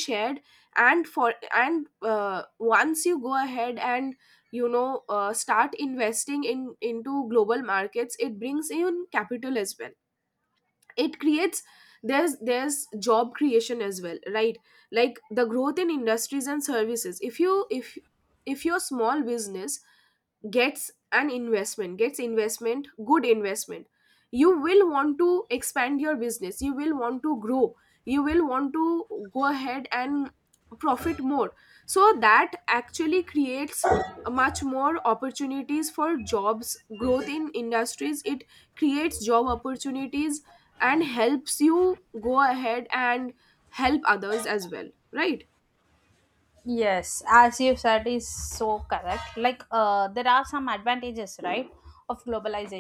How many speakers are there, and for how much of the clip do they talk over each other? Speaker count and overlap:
2, no overlap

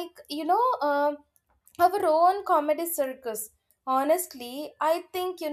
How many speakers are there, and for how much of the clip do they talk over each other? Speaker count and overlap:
1, no overlap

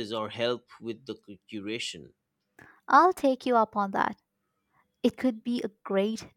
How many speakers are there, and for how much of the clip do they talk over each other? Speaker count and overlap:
2, no overlap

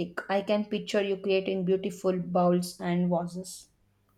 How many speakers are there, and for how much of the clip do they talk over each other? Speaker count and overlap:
1, no overlap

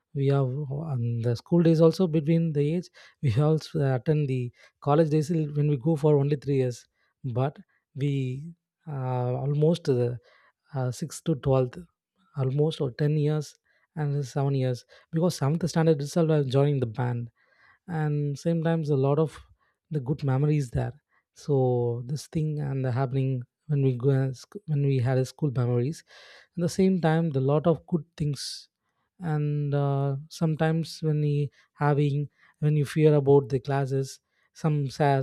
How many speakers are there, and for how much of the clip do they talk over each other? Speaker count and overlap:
1, no overlap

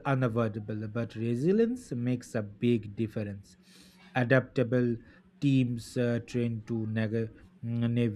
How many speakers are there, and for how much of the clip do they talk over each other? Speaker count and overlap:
1, no overlap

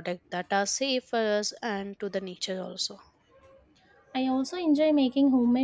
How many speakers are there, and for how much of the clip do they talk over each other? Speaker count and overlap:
2, no overlap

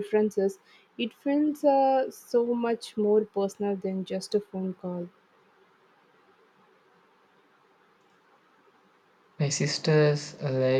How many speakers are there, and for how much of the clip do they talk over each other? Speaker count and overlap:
2, no overlap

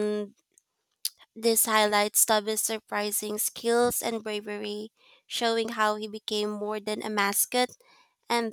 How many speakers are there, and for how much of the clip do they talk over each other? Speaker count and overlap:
1, no overlap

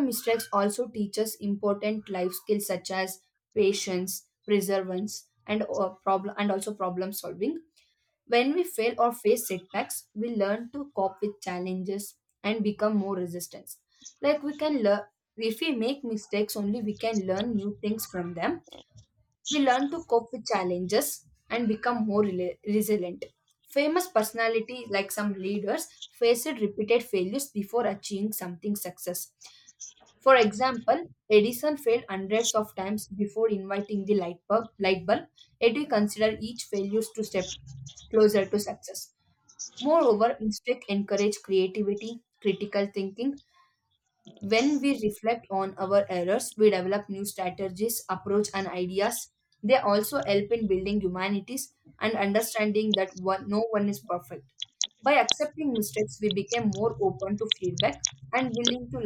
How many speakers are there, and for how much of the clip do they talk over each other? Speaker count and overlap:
1, no overlap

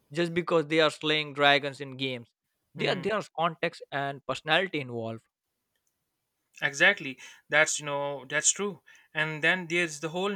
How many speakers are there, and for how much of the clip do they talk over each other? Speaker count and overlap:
2, about 3%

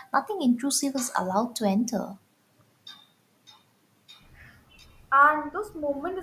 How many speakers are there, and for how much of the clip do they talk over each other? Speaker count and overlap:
2, no overlap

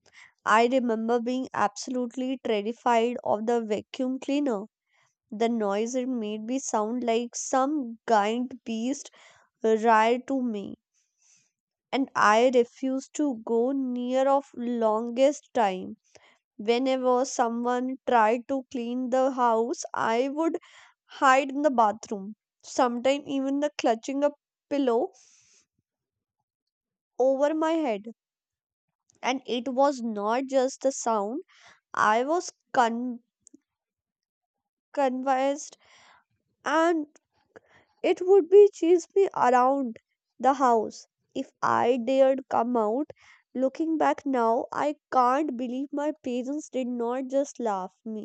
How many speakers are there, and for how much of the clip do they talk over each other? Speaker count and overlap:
1, no overlap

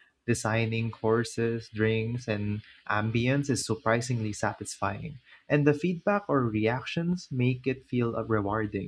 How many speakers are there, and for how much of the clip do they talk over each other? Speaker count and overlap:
1, no overlap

